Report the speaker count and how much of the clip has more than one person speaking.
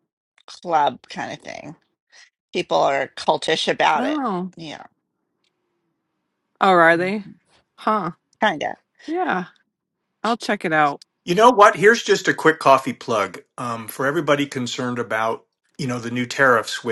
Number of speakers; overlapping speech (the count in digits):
3, about 2%